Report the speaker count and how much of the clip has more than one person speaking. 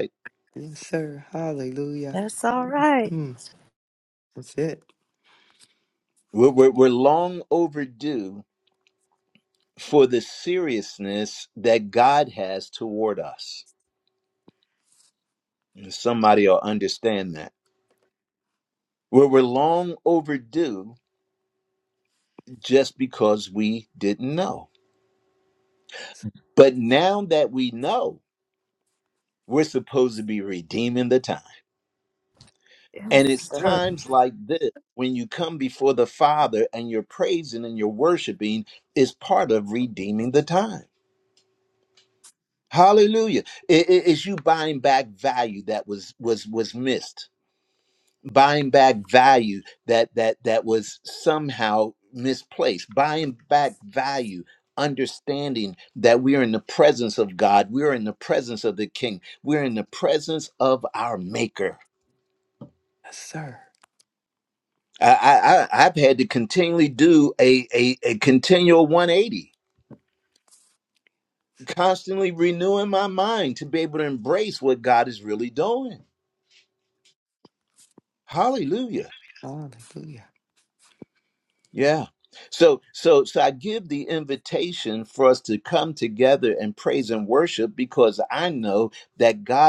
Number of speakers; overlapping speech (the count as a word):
three, about 1%